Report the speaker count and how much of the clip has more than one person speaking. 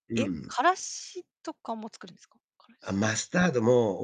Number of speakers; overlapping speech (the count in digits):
2, about 12%